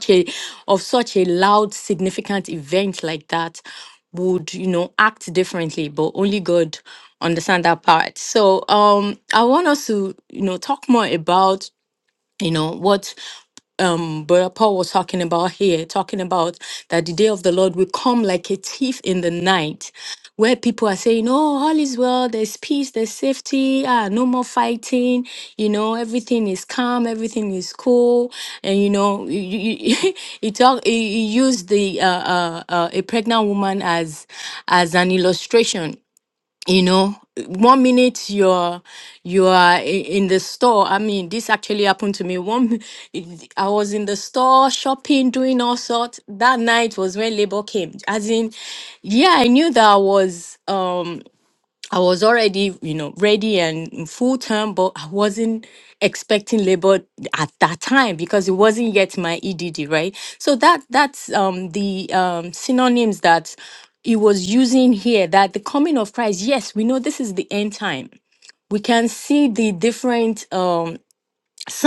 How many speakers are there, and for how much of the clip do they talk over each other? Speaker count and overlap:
1, no overlap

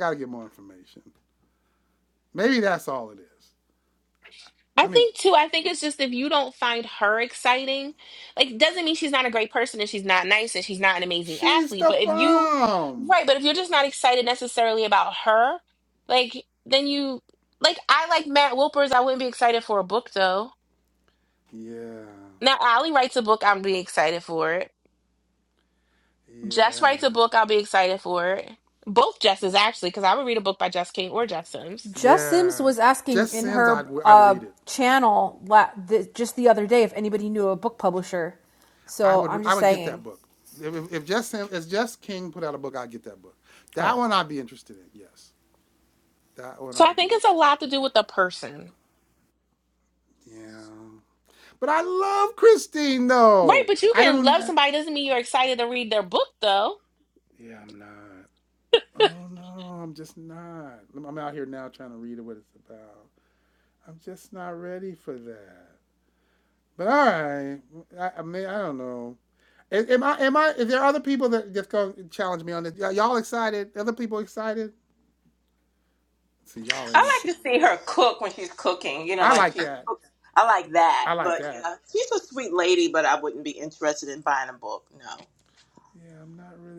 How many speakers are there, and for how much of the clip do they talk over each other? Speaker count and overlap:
4, about 10%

